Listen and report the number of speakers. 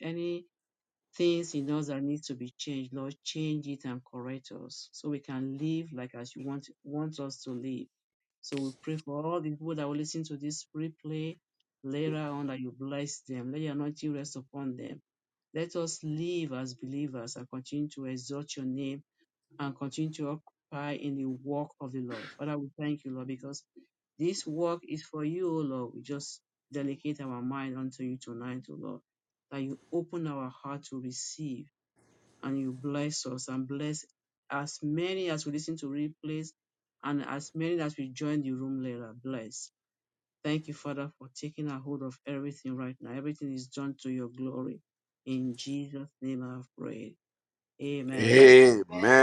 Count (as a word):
two